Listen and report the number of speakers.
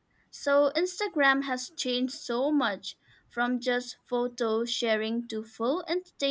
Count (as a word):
one